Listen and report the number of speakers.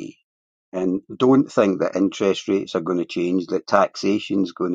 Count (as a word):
one